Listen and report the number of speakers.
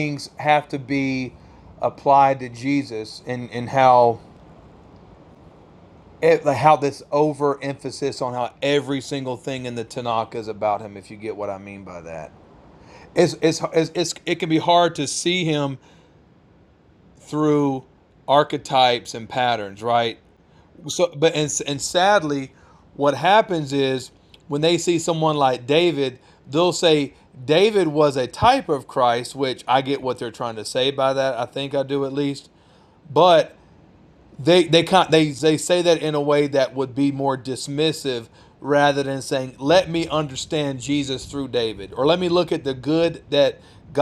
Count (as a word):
one